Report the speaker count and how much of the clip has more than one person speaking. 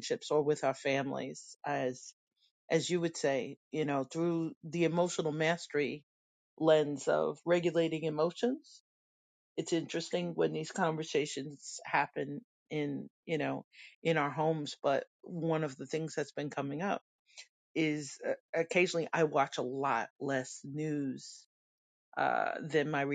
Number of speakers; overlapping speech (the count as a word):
one, no overlap